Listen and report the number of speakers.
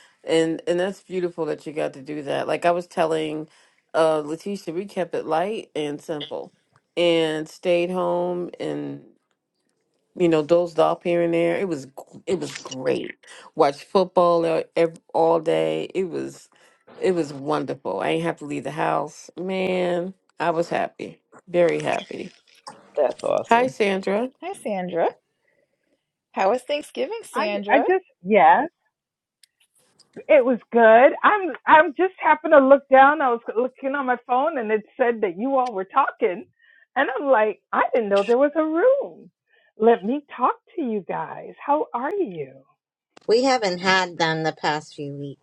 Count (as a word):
four